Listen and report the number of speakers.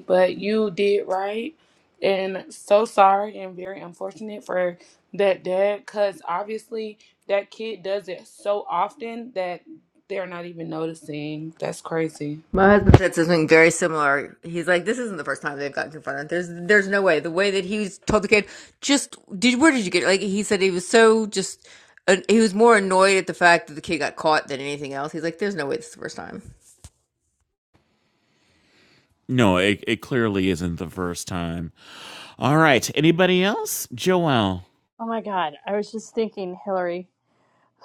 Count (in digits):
4